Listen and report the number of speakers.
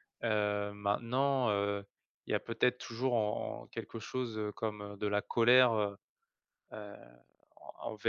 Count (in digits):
1